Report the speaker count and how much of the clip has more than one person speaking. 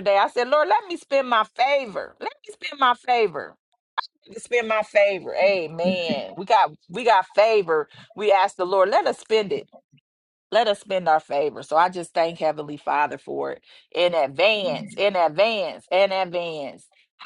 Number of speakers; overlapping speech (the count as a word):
one, no overlap